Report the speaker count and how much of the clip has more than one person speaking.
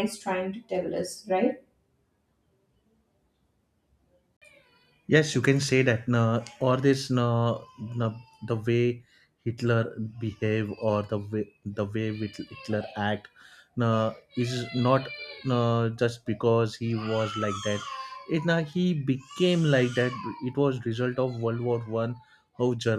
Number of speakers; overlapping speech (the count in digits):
2, no overlap